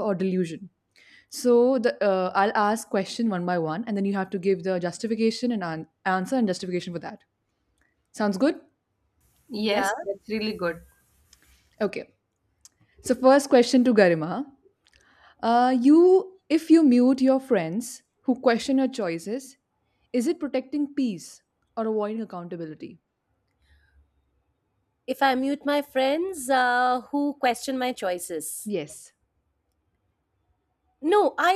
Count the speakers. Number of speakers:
3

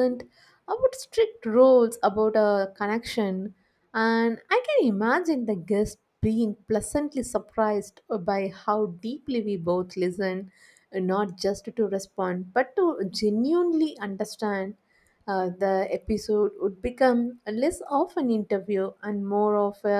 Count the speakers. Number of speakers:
1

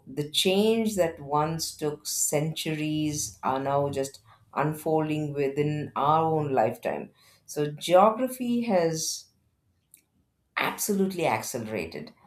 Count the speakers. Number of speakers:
1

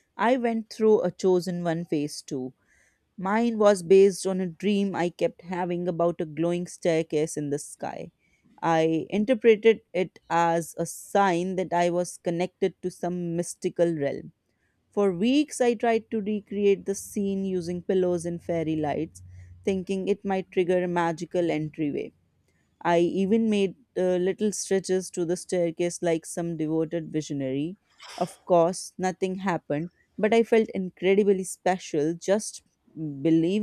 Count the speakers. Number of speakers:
1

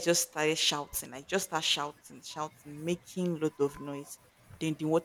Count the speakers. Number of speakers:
1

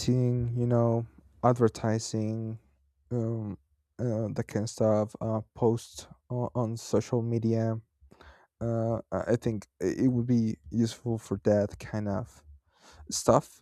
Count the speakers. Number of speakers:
1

